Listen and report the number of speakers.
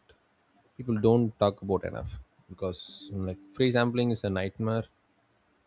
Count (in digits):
1